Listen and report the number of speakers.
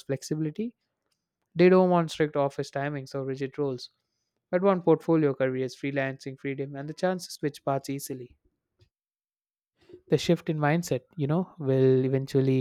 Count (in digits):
1